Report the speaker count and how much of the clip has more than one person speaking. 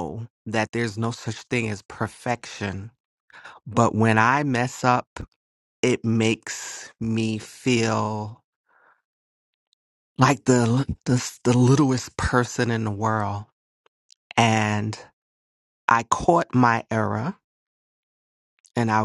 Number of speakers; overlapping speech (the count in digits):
1, no overlap